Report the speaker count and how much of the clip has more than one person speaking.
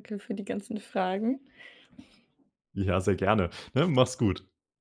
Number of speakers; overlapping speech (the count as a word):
two, no overlap